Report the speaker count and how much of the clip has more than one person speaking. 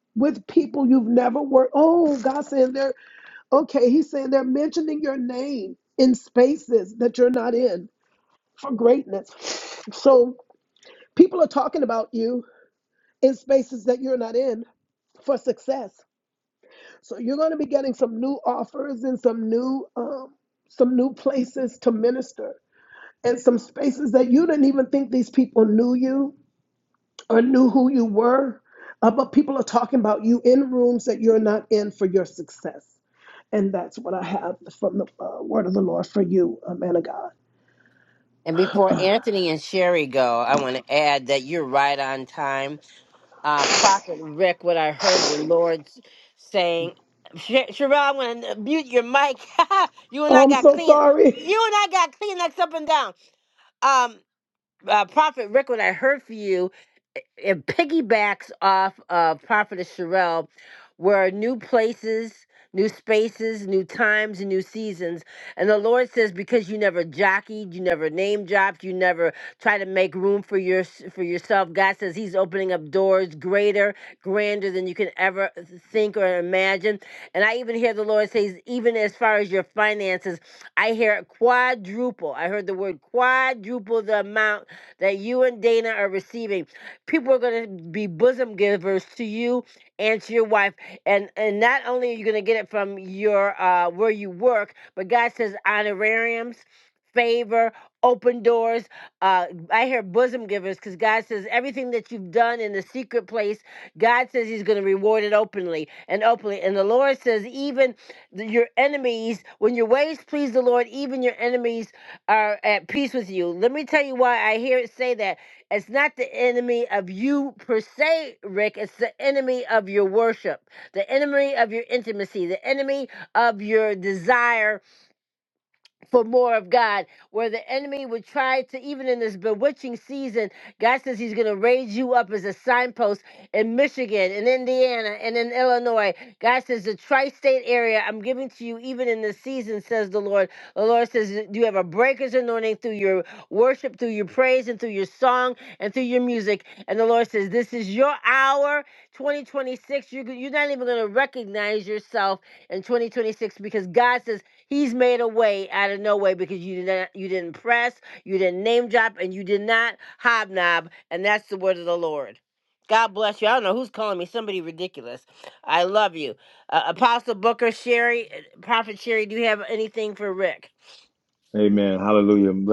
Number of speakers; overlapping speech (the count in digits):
3, about 1%